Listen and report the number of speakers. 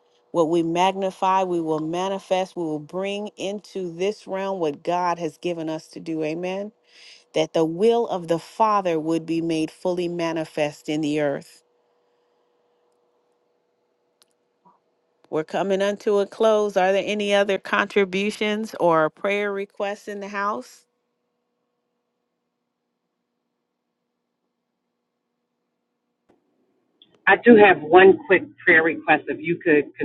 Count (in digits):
2